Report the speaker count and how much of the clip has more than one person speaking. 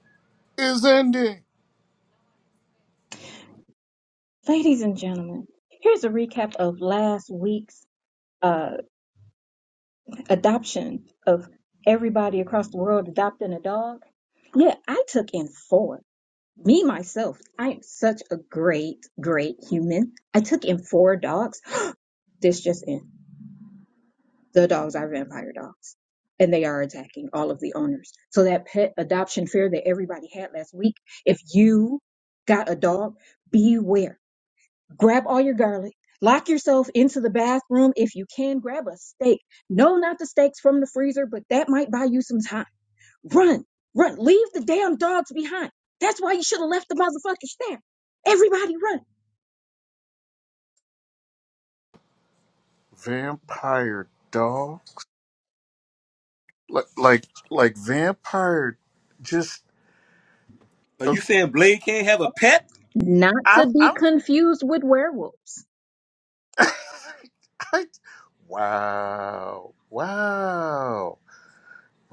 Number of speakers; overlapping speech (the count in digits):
3, about 1%